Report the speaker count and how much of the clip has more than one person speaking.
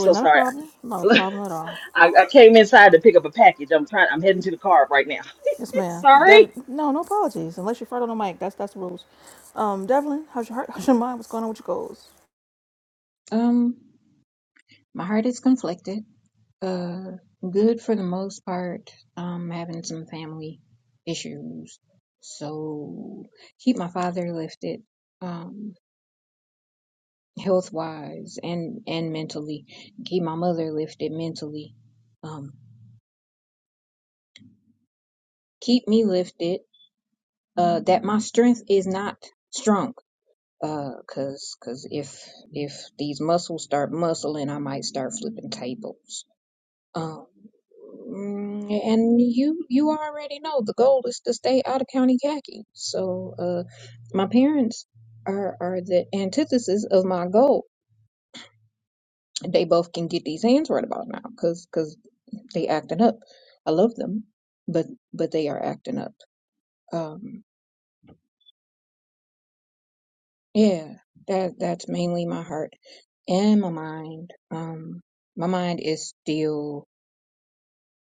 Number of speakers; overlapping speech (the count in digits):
3, about 2%